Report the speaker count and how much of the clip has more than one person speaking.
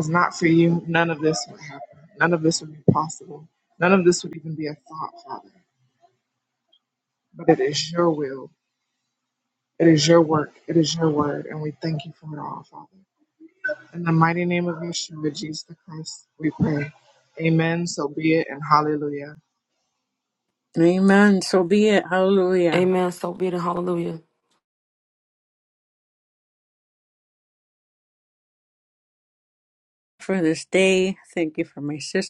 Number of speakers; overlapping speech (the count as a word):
three, under 1%